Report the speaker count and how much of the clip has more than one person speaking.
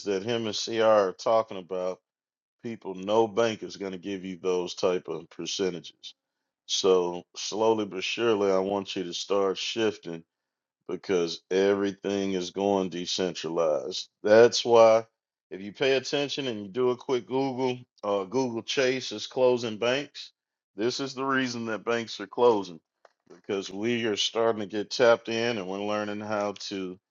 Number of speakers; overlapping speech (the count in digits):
1, no overlap